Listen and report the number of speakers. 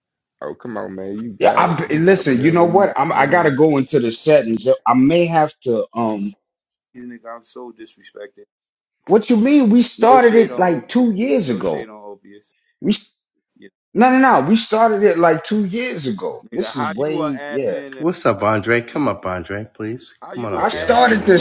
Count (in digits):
4